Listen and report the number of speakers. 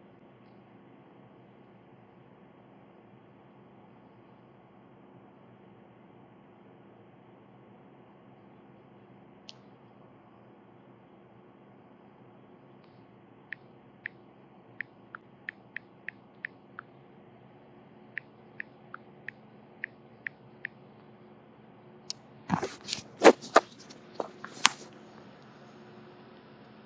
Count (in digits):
0